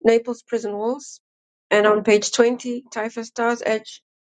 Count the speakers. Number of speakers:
1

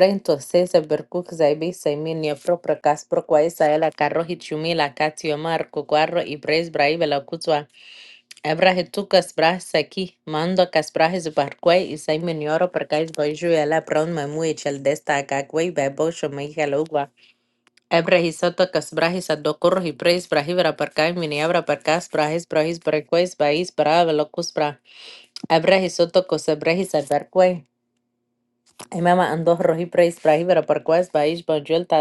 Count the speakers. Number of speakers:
1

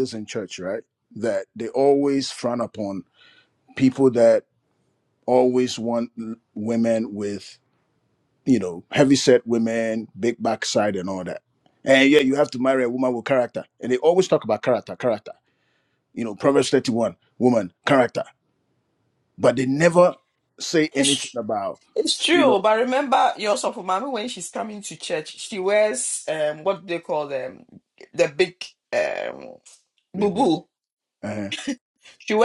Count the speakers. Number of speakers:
2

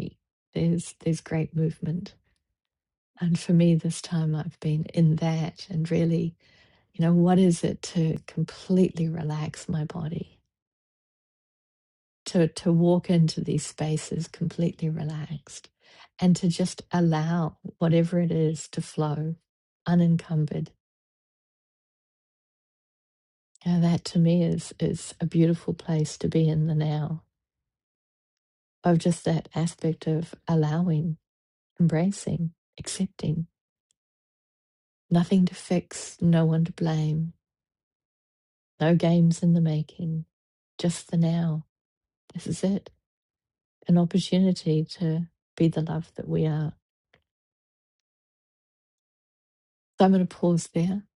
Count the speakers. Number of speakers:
1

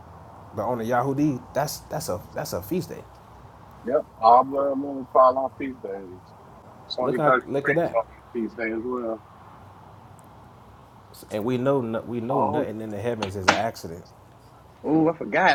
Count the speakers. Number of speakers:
3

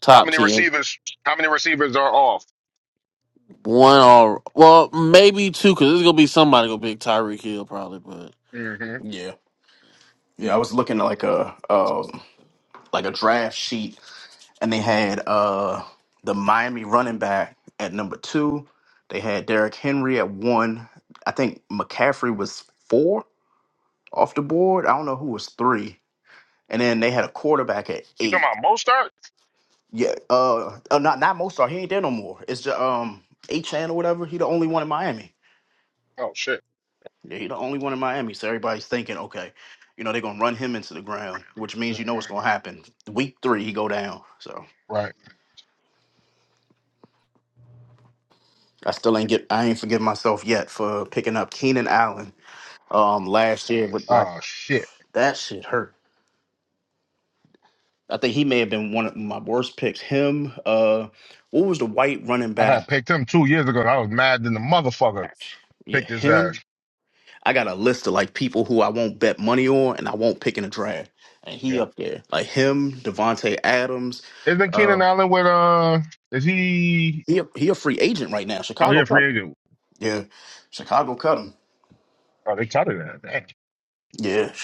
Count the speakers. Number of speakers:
3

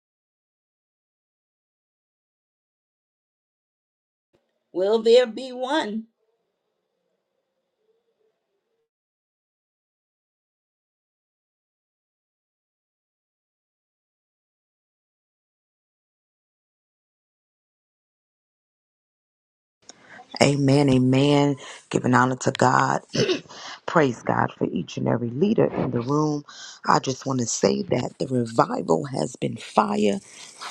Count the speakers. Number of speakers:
2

